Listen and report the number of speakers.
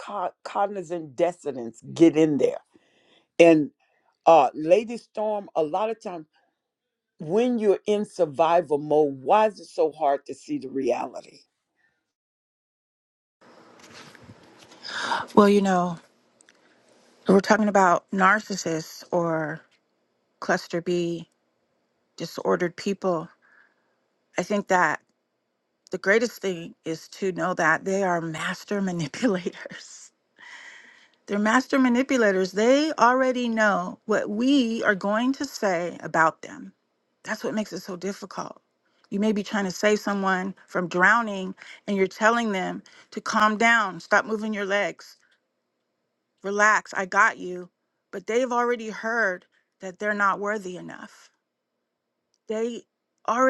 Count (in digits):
2